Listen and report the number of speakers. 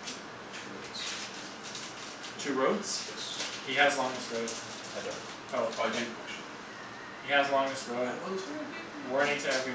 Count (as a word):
two